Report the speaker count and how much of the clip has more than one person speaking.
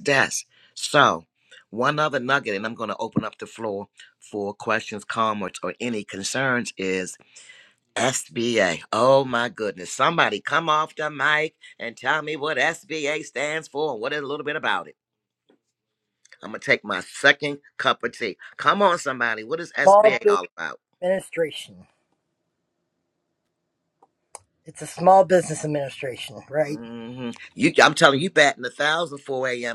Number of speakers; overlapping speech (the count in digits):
2, about 2%